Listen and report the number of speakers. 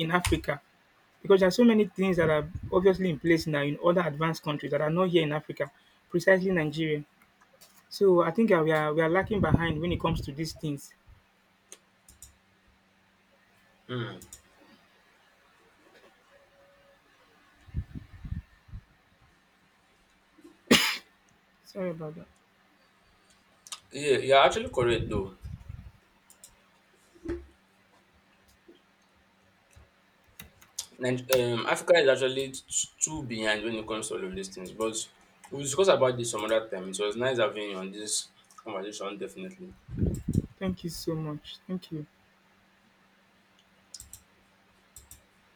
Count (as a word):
two